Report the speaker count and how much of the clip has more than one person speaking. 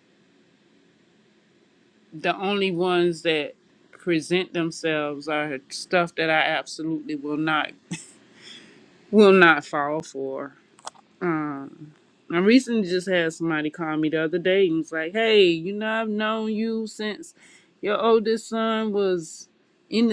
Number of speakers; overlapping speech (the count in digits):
1, no overlap